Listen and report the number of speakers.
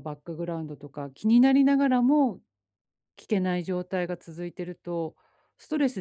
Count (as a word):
one